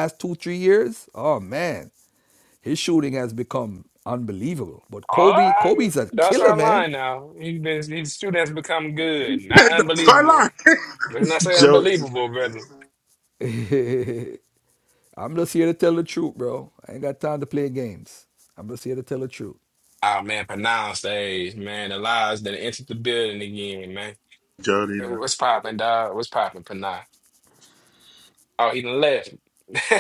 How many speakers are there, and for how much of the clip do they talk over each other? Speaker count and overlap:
three, about 11%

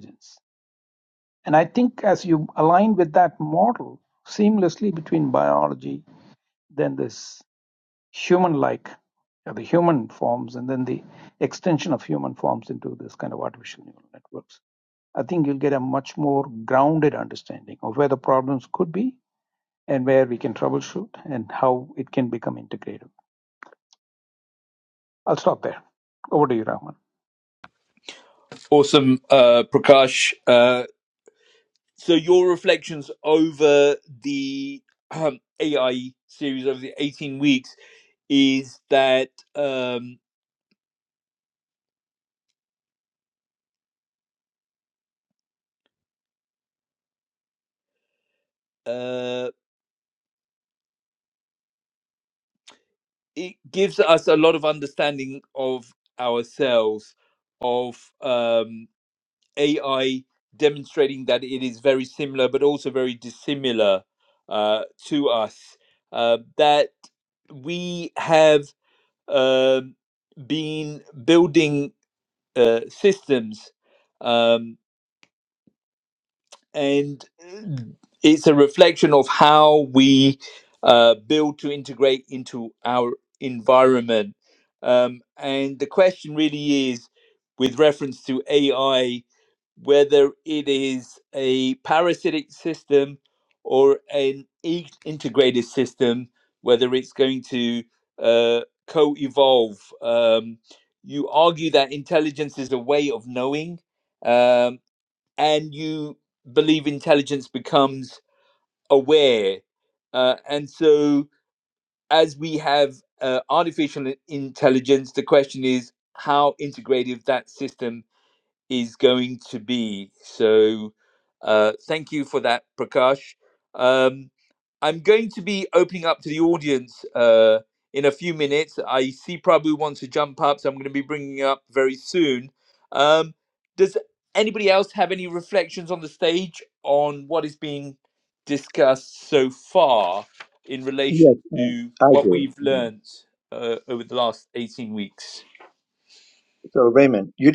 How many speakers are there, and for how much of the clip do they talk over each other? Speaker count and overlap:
three, about 1%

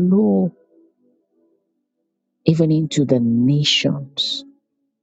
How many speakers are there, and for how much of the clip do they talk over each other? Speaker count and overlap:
one, no overlap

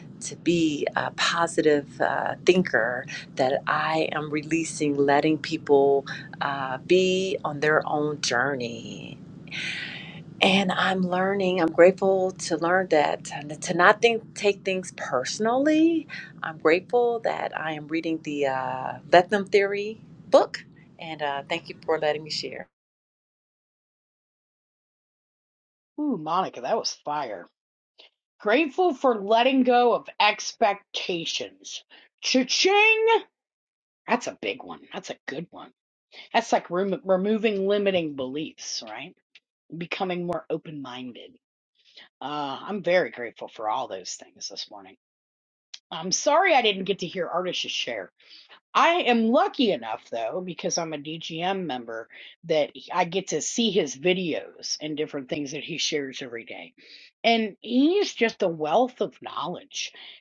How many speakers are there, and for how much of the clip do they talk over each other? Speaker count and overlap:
two, no overlap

